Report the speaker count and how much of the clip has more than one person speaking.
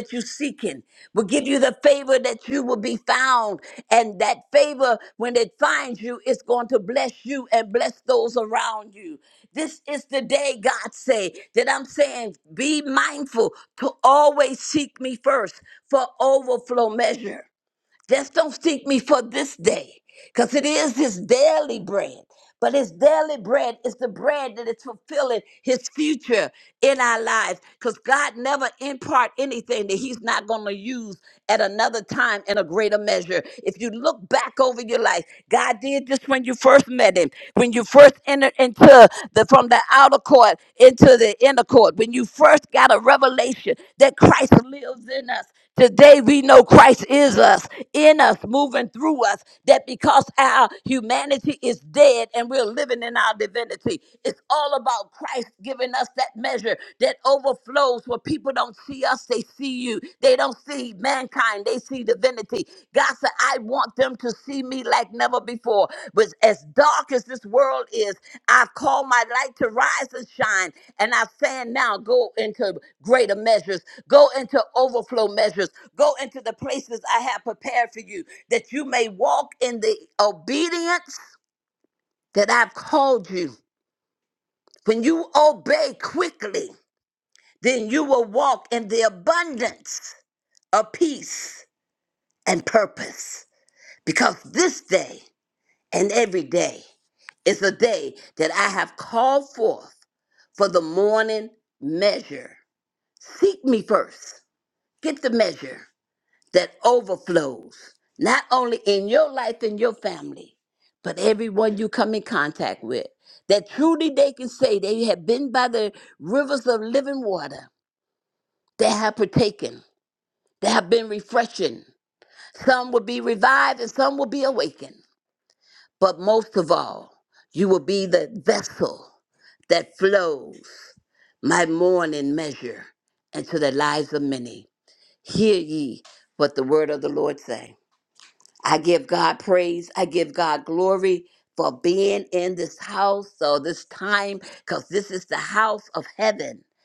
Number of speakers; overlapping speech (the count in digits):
1, no overlap